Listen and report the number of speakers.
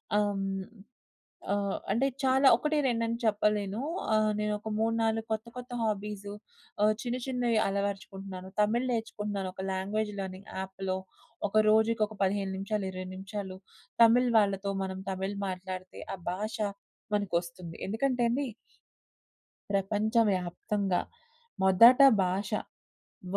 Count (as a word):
one